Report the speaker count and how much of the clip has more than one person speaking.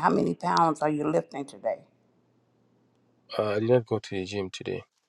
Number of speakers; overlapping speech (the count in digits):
2, no overlap